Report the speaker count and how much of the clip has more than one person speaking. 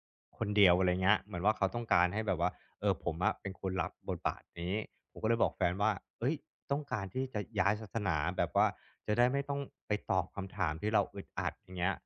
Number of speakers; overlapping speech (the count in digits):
1, no overlap